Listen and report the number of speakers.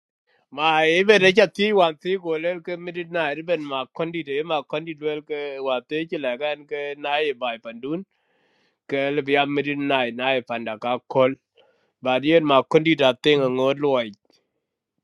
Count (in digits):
1